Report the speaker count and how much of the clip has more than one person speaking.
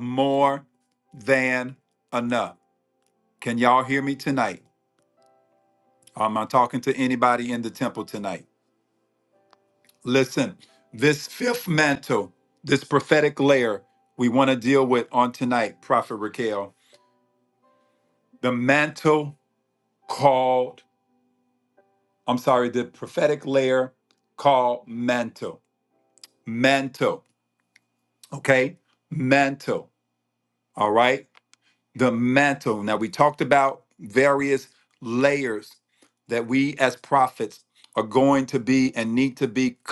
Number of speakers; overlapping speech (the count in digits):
1, no overlap